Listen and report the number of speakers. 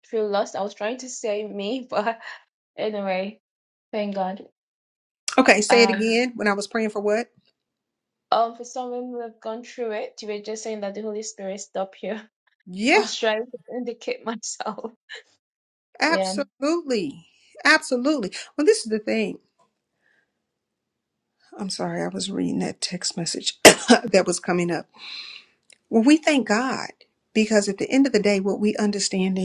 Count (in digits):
2